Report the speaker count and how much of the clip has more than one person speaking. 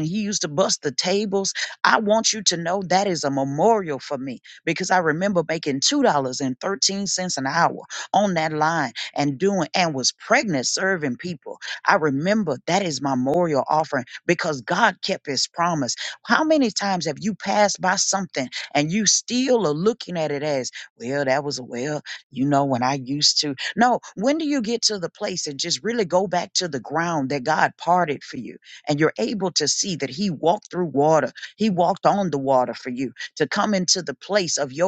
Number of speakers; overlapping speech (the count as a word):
one, no overlap